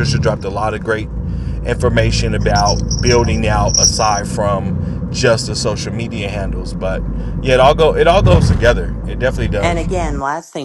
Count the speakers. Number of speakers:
two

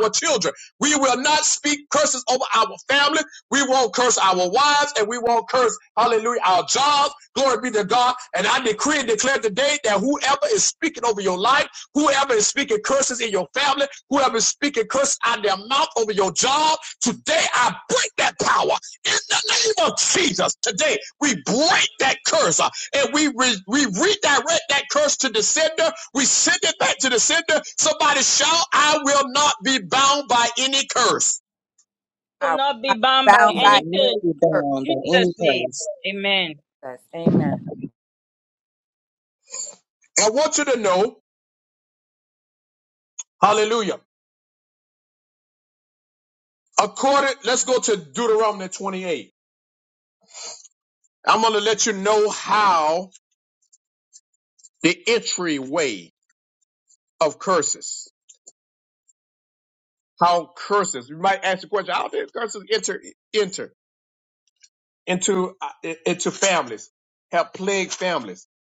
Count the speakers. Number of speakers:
four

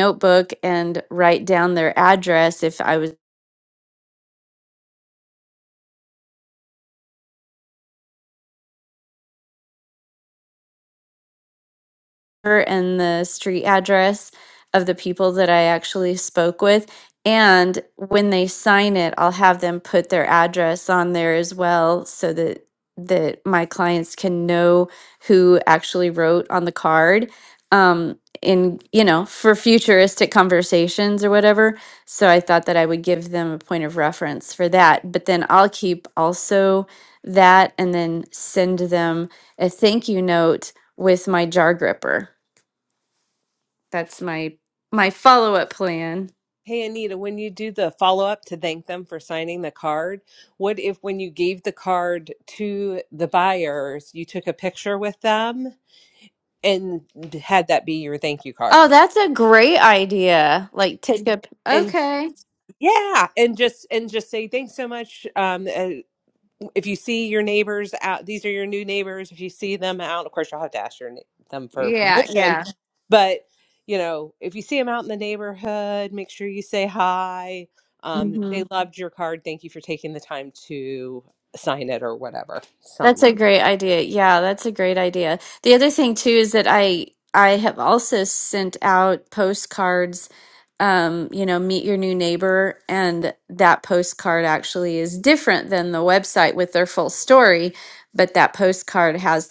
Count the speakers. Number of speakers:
two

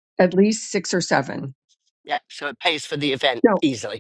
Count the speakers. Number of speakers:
two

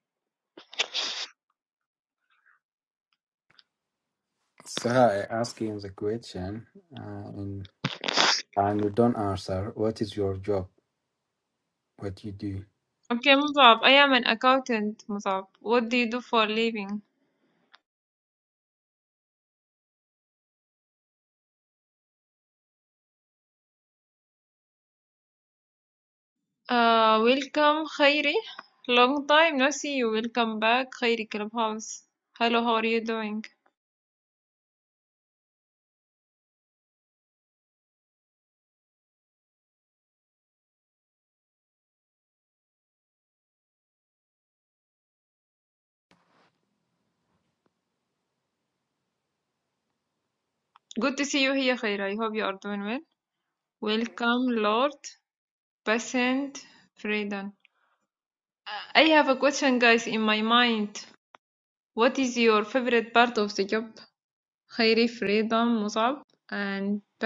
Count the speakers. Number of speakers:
two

